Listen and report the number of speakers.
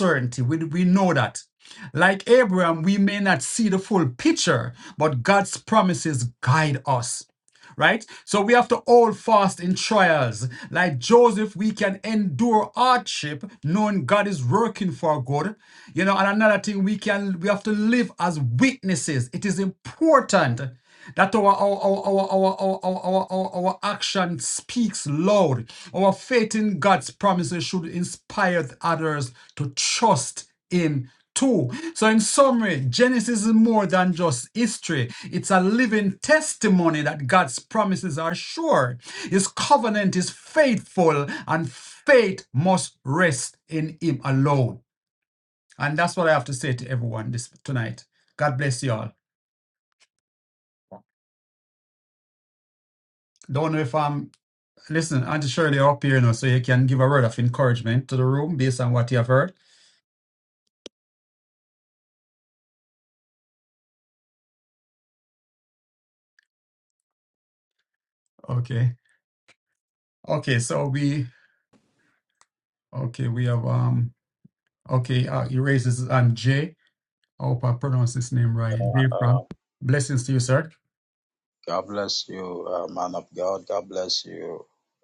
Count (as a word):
two